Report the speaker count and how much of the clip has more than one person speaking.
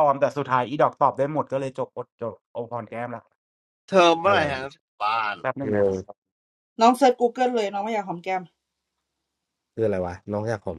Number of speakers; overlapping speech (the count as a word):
four, about 4%